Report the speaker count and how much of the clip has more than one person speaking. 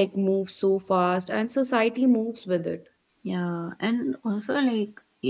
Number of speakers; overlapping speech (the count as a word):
two, no overlap